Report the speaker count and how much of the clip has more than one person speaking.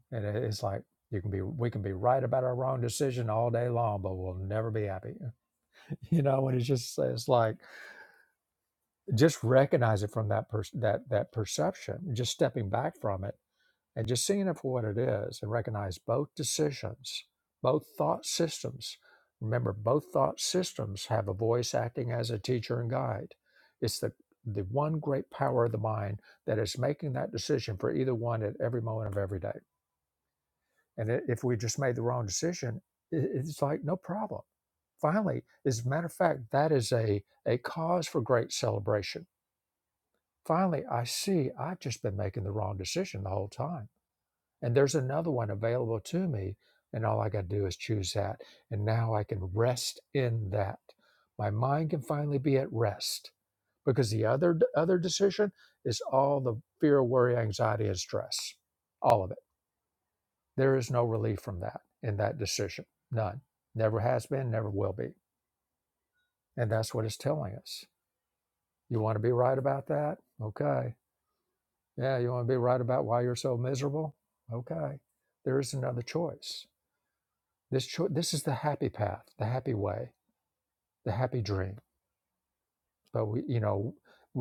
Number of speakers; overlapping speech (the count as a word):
one, no overlap